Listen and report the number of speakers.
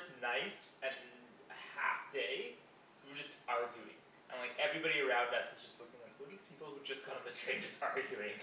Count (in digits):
1